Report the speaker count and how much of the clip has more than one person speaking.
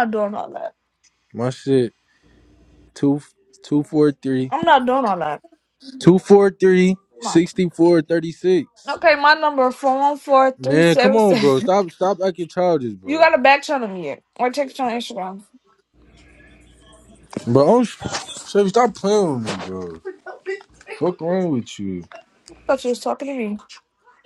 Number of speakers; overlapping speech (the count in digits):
2, about 6%